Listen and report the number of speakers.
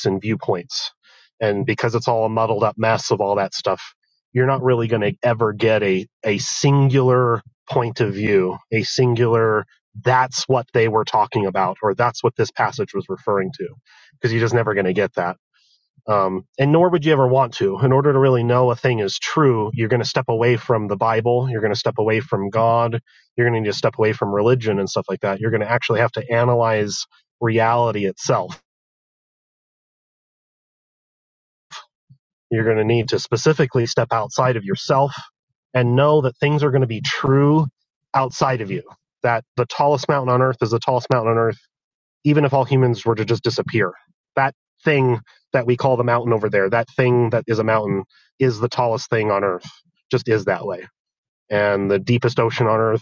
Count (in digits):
1